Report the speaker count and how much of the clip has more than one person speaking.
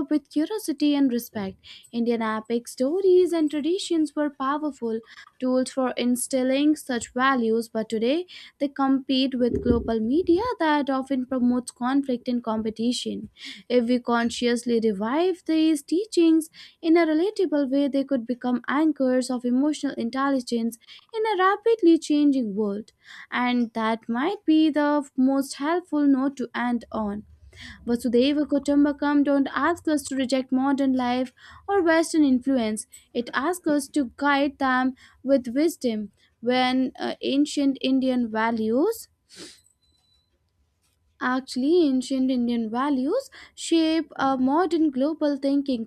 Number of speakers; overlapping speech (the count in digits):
1, no overlap